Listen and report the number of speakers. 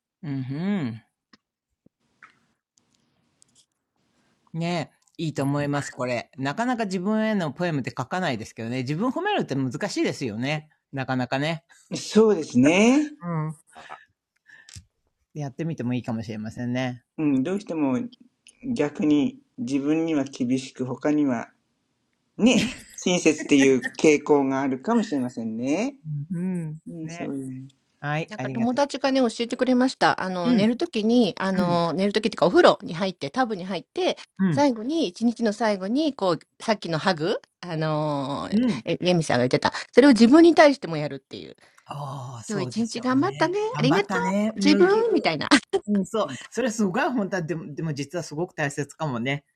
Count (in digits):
3